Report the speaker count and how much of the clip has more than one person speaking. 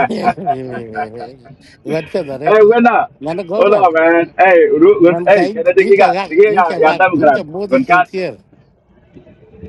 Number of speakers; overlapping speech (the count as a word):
two, about 32%